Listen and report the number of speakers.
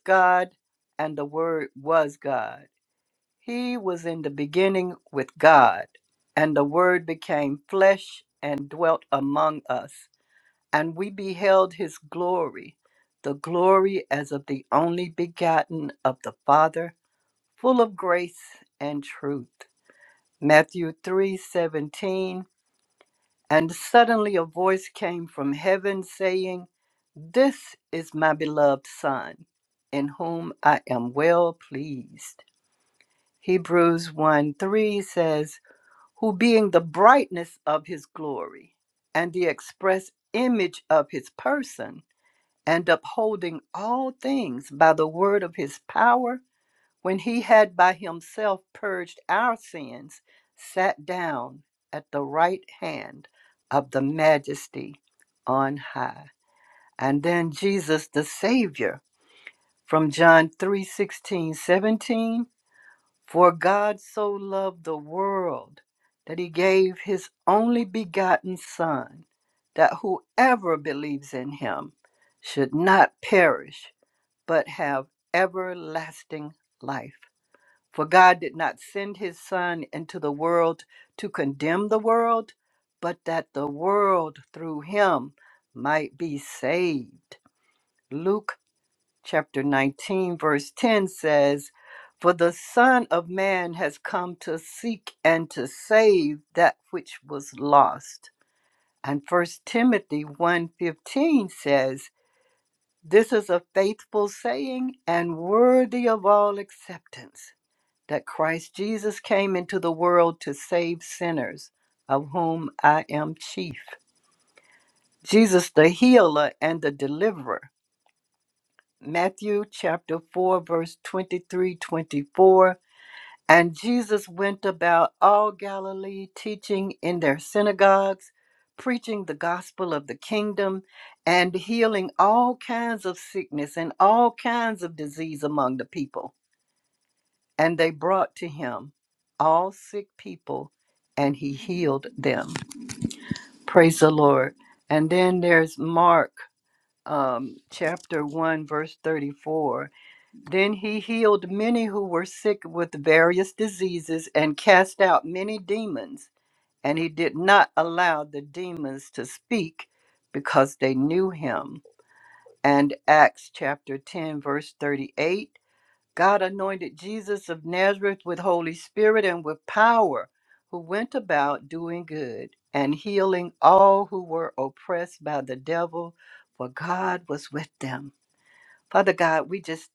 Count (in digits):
1